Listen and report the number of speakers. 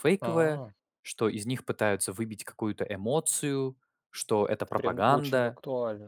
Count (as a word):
two